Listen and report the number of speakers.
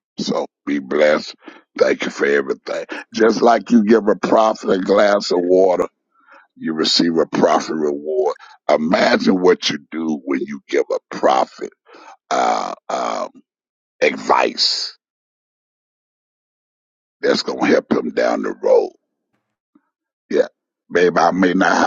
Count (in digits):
1